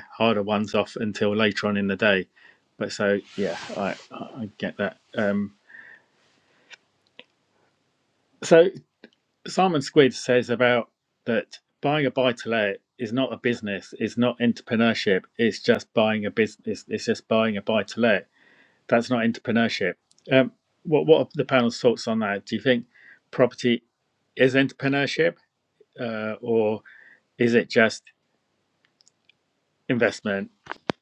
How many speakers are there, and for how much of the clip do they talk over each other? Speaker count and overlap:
one, no overlap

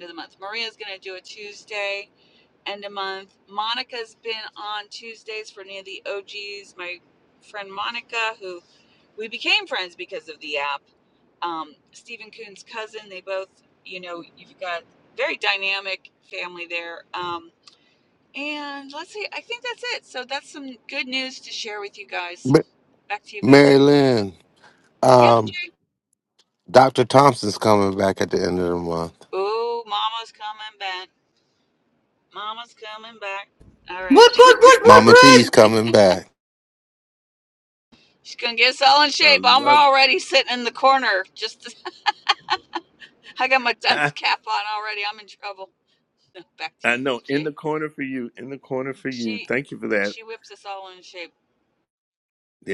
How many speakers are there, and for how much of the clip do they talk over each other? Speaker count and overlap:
four, about 6%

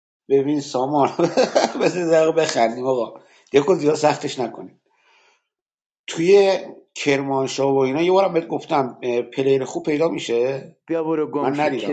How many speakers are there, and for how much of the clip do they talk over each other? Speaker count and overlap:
two, about 5%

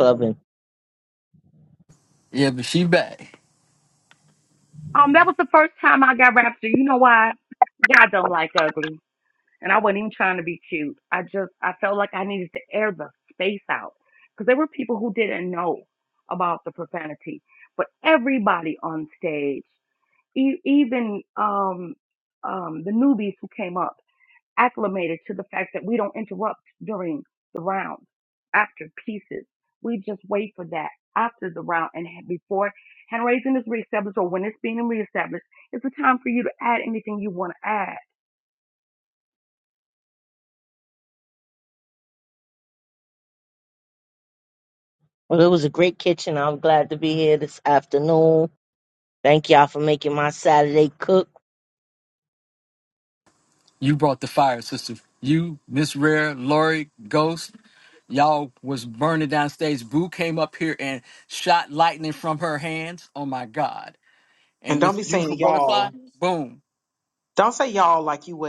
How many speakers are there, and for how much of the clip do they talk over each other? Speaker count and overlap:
four, about 2%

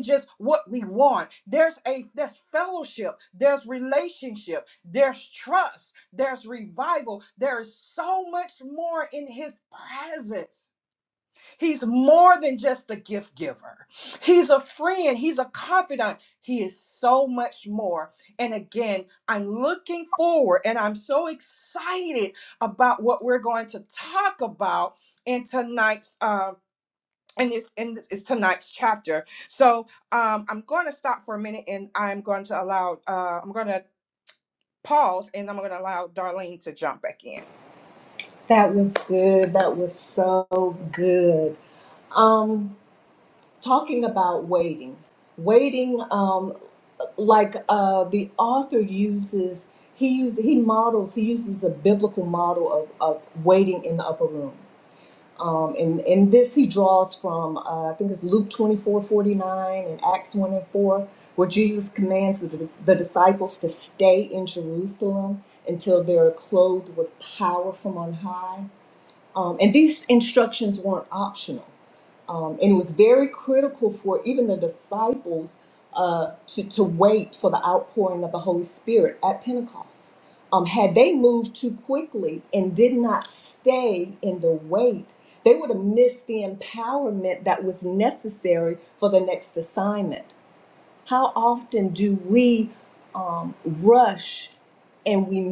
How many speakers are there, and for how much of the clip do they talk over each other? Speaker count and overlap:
two, no overlap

